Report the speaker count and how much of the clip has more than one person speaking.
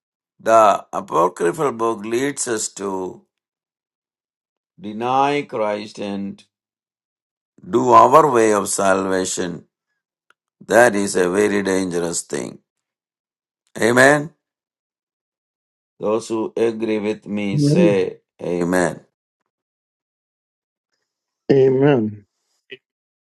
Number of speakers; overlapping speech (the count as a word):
two, about 2%